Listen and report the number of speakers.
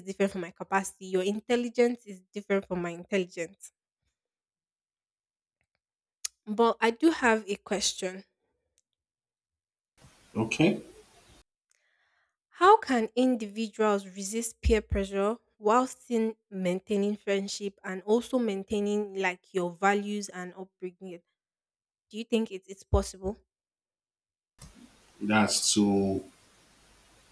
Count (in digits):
2